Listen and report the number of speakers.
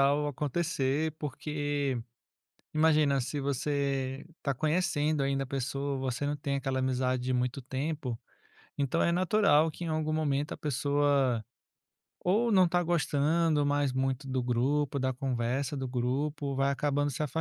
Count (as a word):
one